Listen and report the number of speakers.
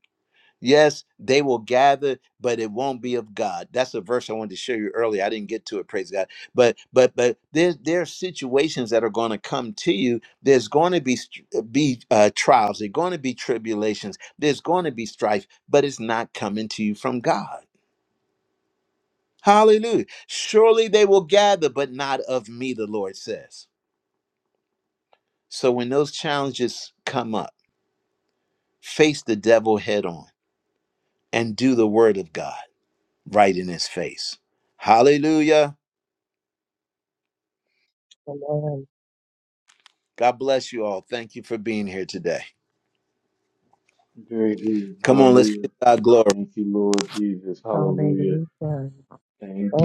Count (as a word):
three